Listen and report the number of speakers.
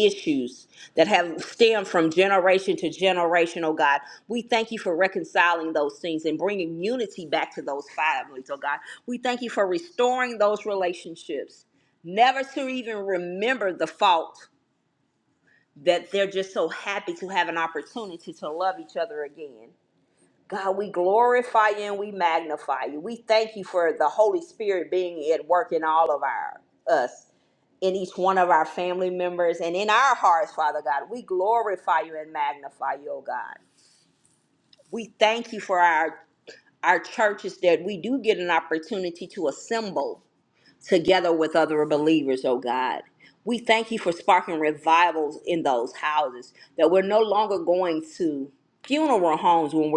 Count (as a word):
one